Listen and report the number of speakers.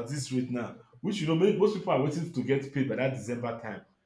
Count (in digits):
1